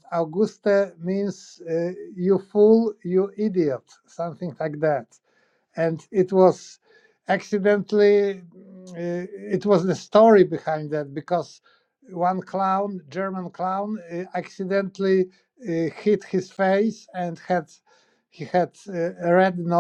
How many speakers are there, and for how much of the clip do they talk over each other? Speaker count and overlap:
one, no overlap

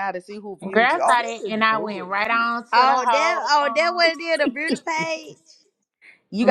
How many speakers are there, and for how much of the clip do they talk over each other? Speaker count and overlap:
three, about 43%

